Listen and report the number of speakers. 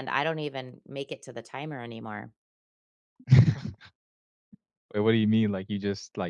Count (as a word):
two